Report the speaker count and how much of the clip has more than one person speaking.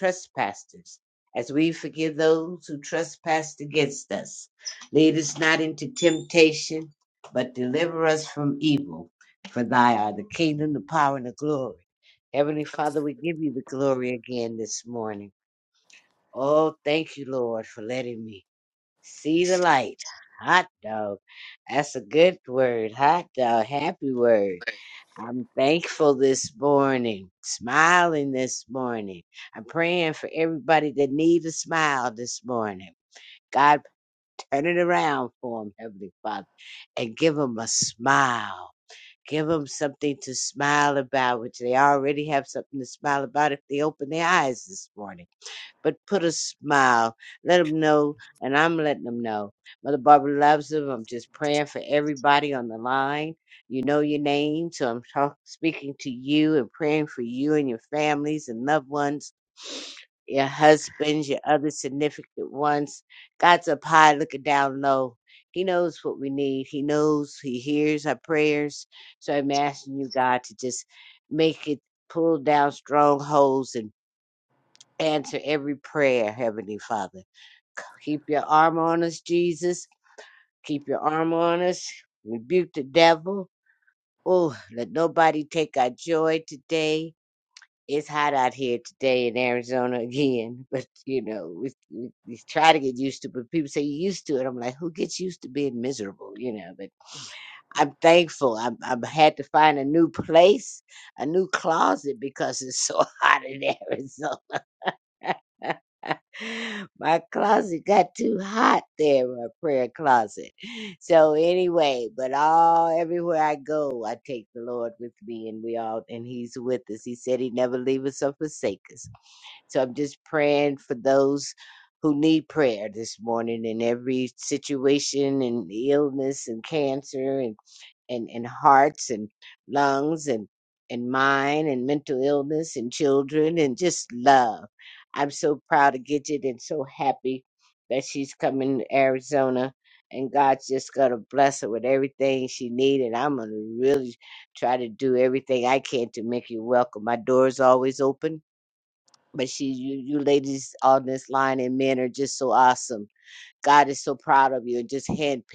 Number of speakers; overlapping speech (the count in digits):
1, no overlap